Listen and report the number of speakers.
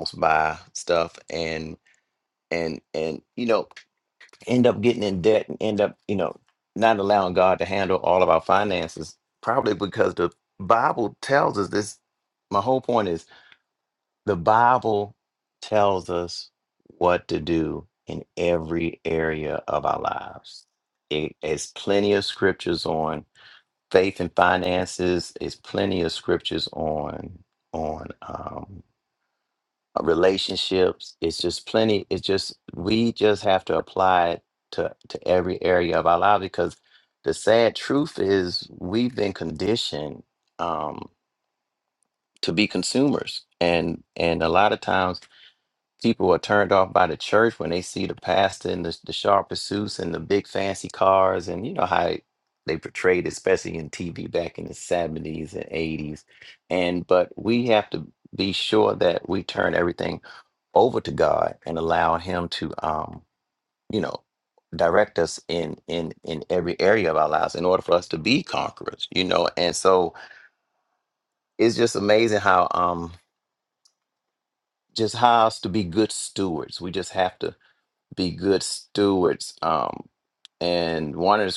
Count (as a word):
one